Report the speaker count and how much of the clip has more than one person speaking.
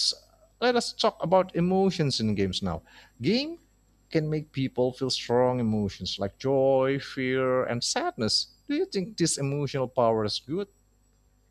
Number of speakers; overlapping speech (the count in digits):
1, no overlap